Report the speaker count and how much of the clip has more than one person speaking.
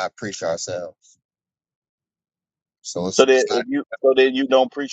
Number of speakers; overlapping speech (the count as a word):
two, about 10%